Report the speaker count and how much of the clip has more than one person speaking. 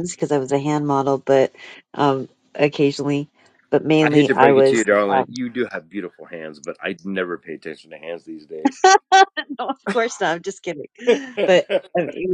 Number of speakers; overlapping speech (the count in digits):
2, about 13%